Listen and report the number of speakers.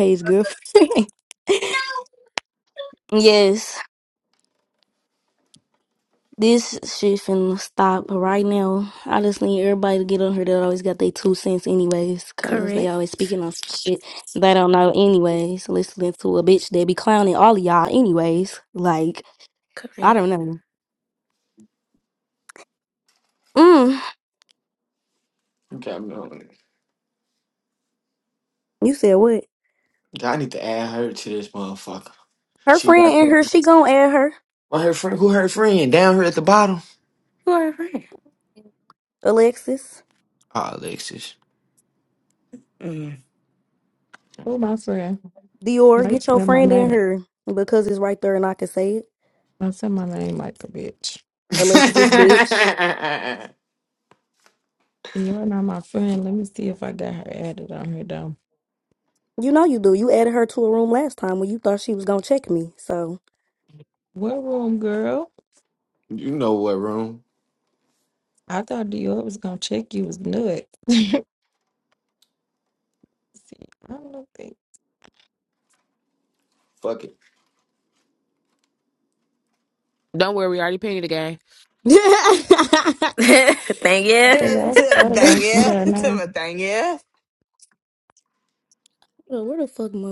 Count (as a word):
six